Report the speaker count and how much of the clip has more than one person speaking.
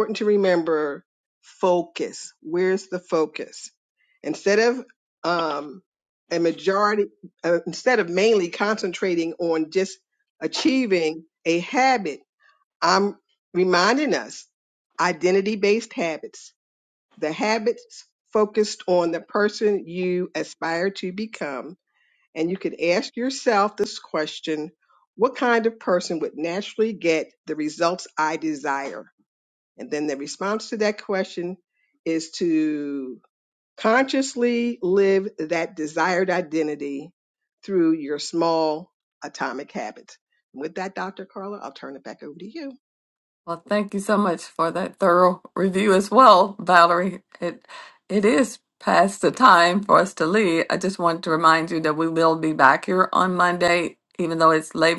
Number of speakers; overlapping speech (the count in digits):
2, no overlap